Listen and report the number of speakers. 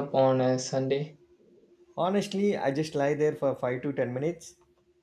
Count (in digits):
2